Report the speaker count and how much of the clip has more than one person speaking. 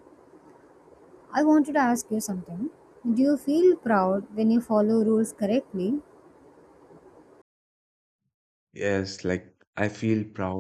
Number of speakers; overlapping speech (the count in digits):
2, no overlap